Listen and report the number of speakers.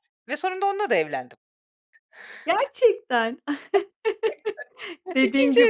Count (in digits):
2